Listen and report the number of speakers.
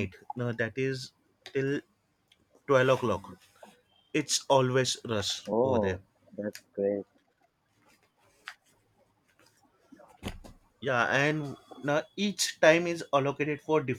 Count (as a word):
two